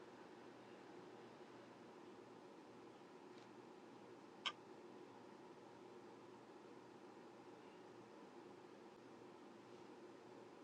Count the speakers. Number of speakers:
0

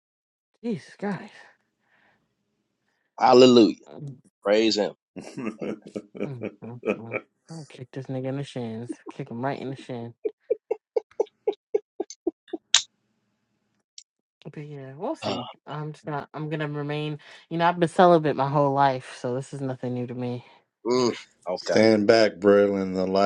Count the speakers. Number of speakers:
3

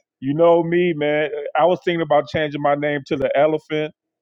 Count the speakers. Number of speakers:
1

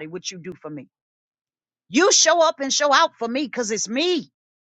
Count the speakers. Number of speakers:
1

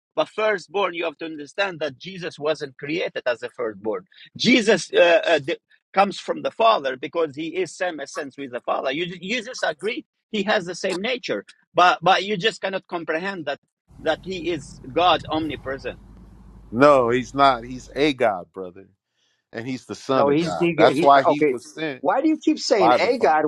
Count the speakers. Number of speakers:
3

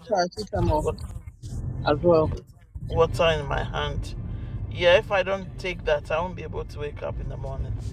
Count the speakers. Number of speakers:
2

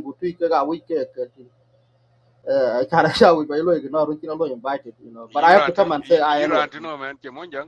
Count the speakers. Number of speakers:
2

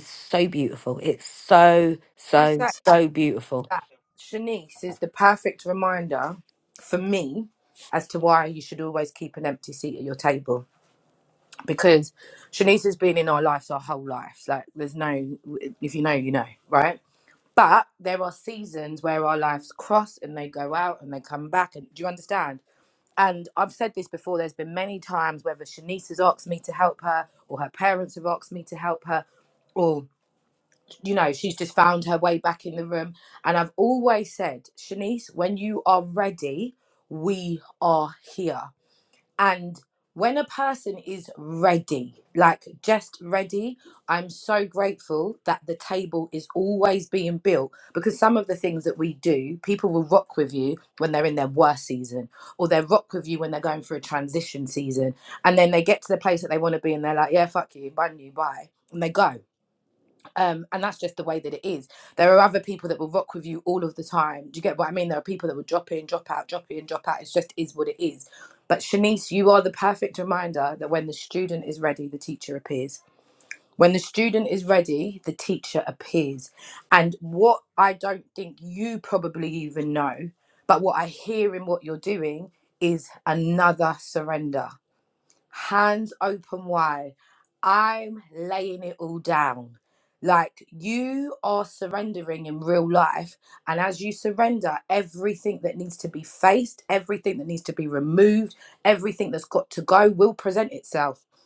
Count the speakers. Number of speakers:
2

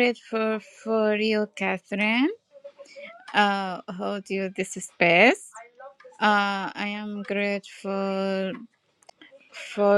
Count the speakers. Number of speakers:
1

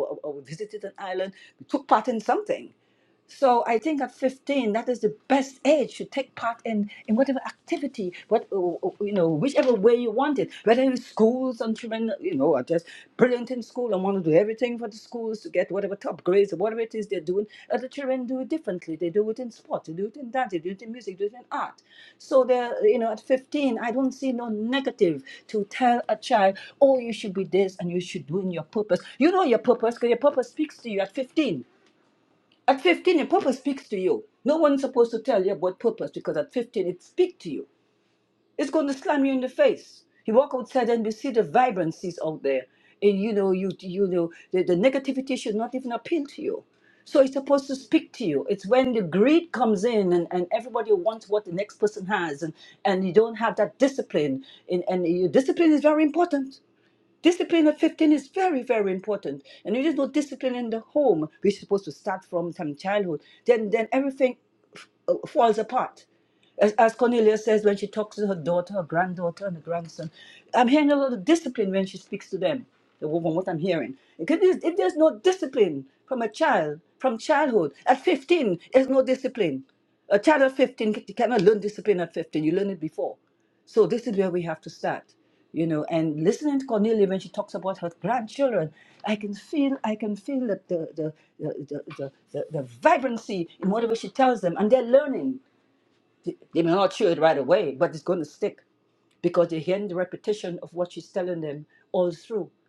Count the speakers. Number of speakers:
1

